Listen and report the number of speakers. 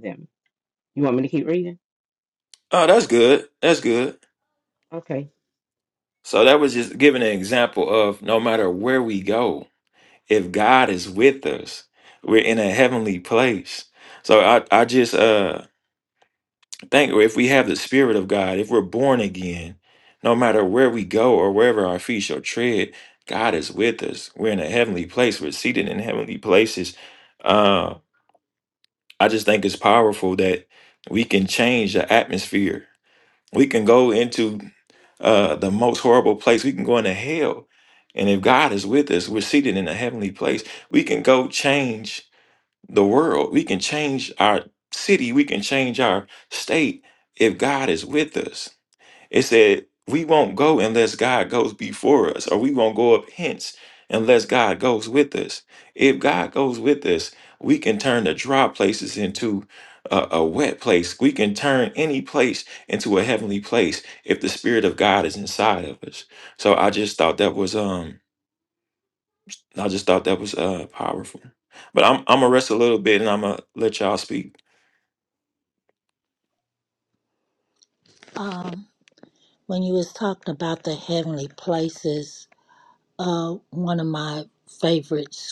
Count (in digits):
3